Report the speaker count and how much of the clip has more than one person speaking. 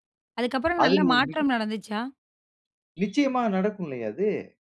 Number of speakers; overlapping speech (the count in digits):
2, about 14%